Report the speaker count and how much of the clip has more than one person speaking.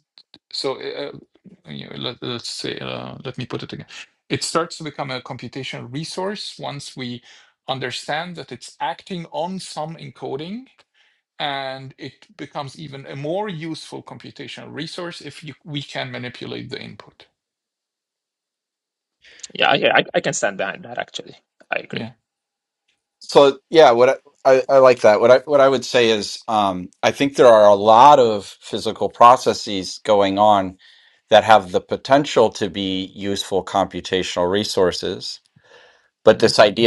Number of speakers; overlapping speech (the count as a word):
three, about 1%